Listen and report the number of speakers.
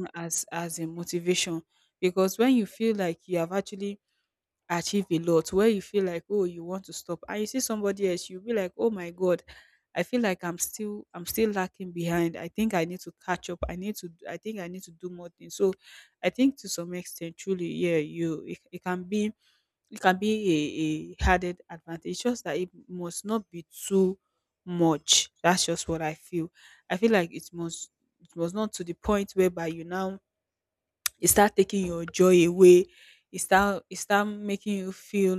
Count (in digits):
1